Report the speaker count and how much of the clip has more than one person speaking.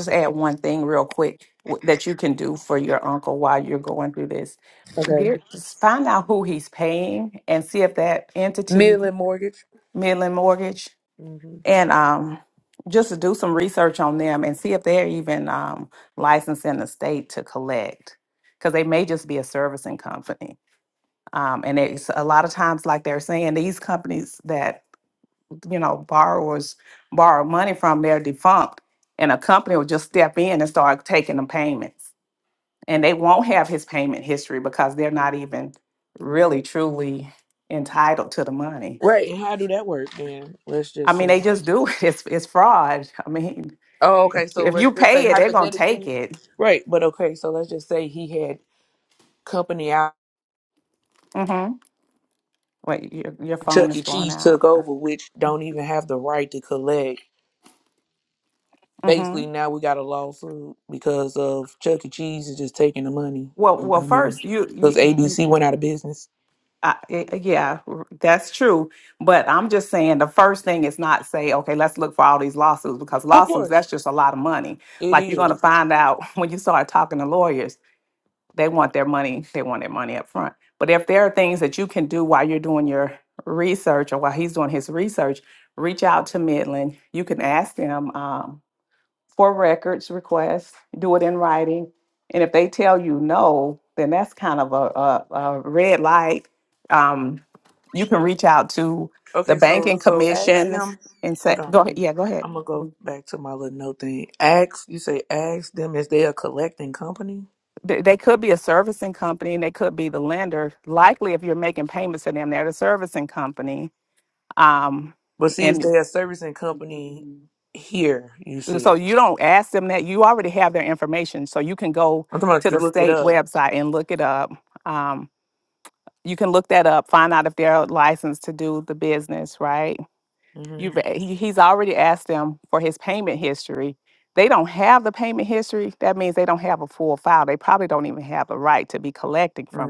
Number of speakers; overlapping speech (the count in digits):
2, about 6%